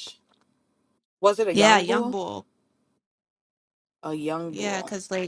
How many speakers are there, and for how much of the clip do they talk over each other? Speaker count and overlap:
2, about 18%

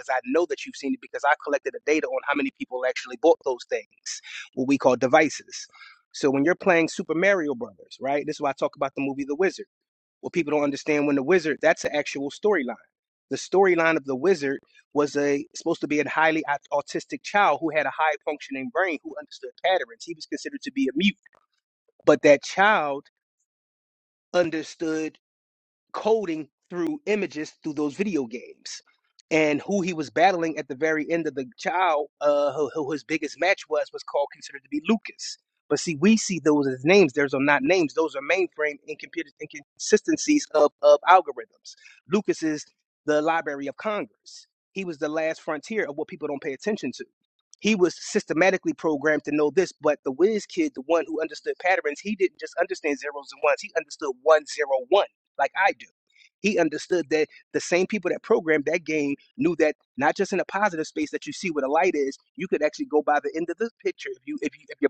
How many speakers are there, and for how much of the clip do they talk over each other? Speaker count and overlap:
1, no overlap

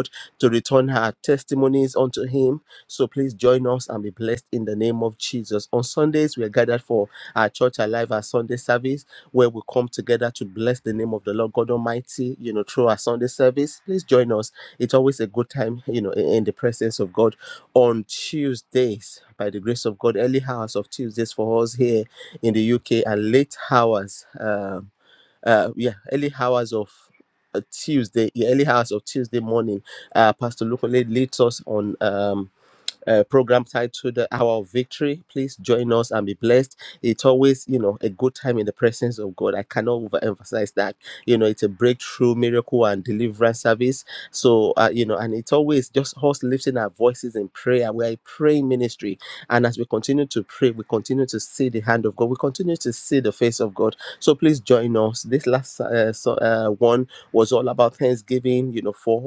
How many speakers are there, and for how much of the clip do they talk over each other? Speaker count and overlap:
1, no overlap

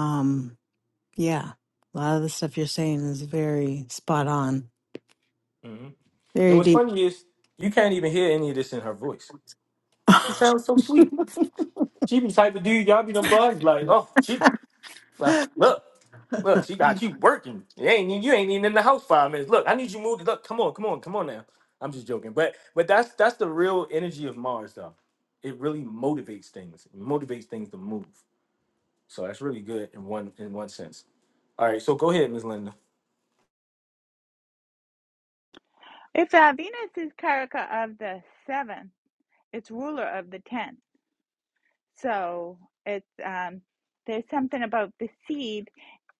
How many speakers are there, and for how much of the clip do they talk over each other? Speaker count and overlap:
3, about 1%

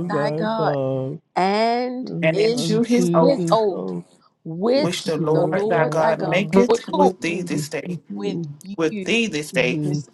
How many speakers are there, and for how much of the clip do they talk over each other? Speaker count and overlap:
3, about 63%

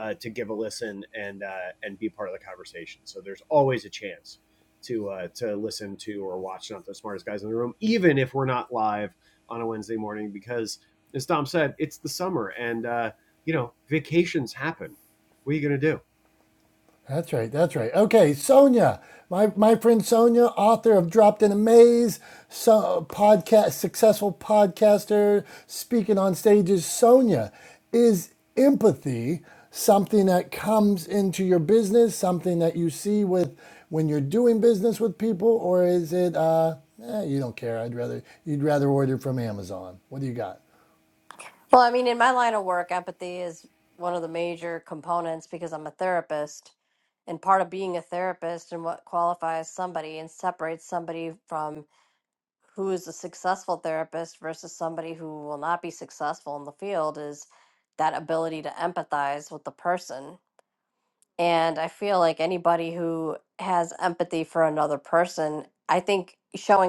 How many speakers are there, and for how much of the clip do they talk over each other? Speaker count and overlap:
3, no overlap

